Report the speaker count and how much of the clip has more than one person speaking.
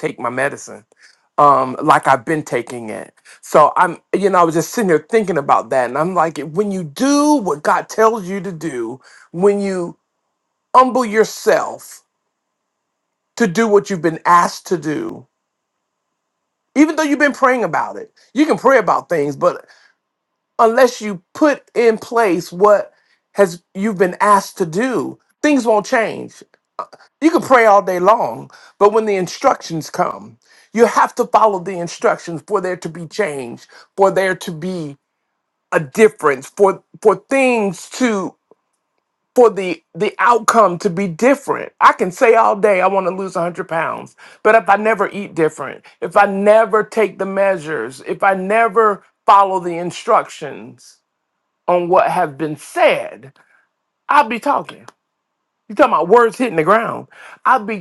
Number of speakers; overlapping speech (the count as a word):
one, no overlap